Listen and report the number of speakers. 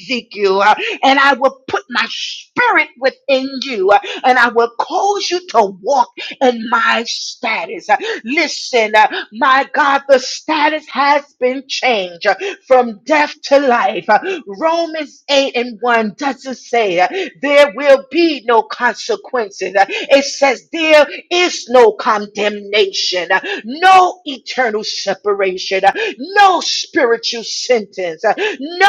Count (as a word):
one